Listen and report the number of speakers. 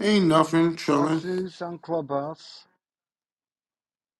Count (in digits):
2